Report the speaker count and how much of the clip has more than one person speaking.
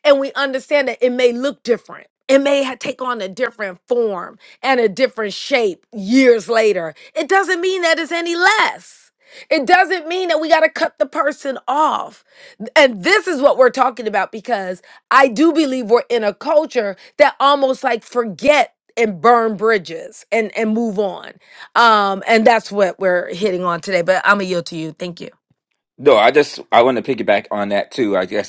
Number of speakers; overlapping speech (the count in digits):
2, no overlap